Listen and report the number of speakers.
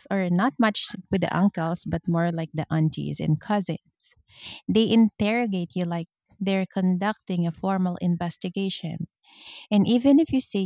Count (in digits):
1